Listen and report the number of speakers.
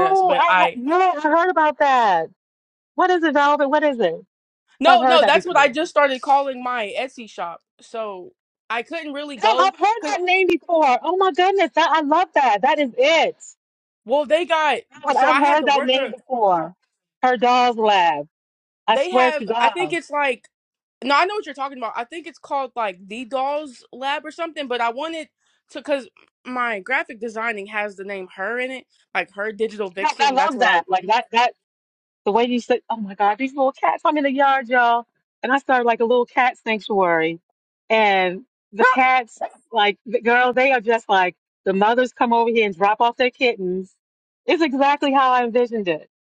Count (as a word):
two